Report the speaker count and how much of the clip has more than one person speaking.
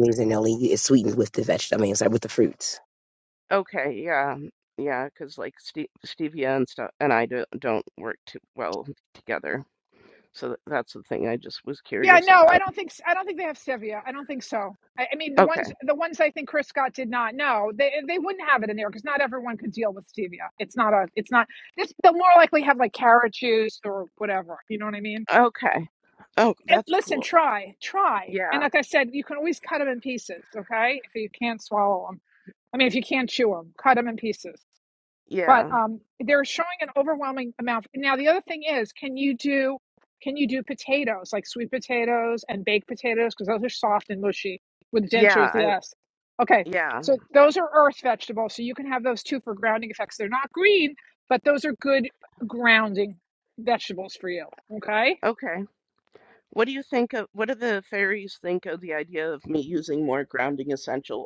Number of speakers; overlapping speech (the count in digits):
3, about 5%